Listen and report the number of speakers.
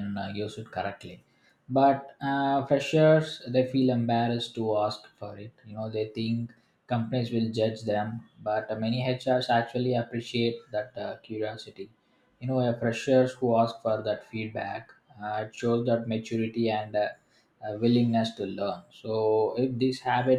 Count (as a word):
one